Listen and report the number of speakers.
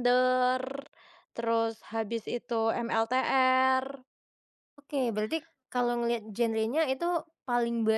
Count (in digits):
2